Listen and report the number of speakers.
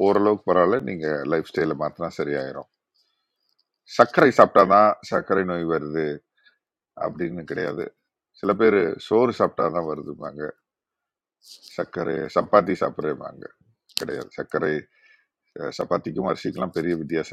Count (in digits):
1